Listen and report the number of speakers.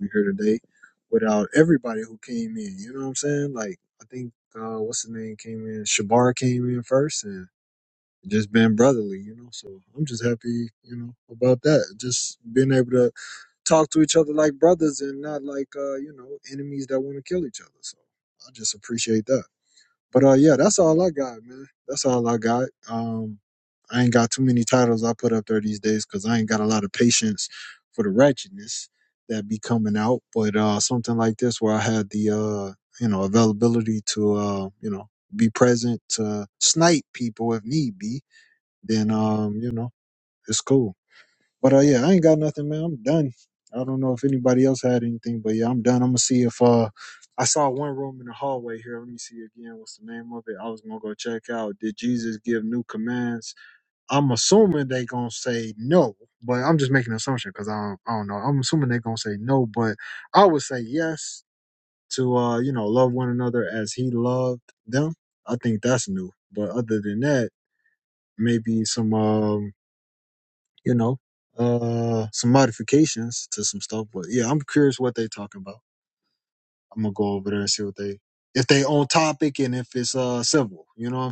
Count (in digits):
1